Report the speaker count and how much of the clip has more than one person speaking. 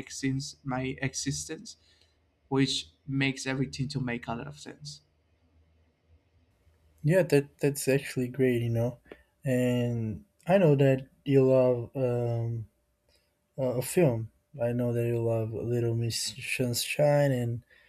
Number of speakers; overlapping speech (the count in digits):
2, no overlap